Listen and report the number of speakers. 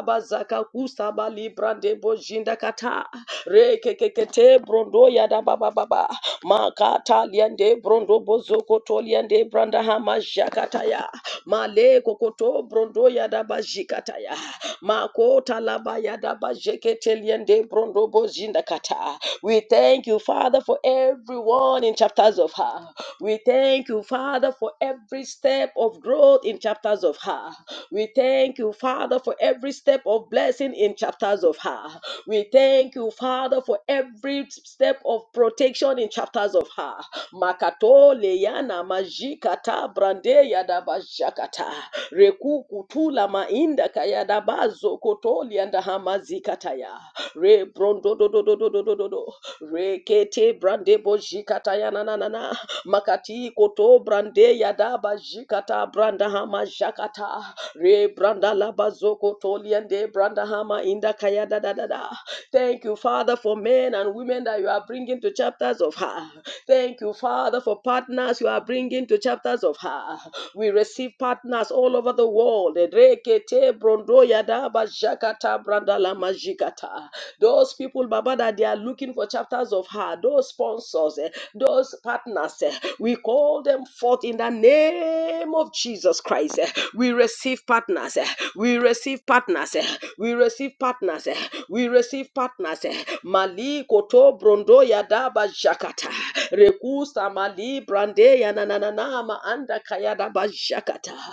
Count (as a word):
one